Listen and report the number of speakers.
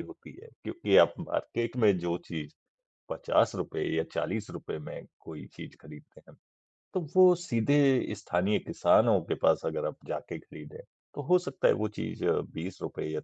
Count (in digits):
1